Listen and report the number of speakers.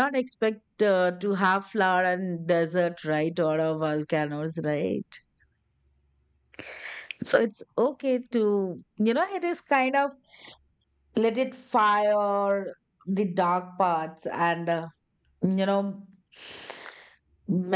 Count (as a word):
one